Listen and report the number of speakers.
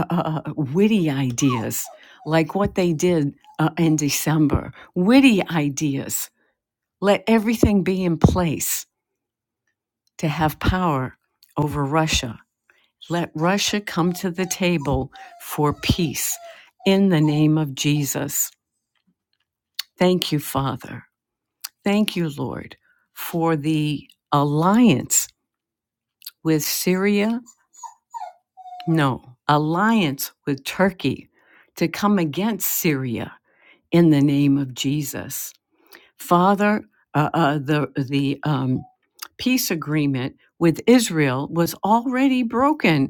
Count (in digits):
1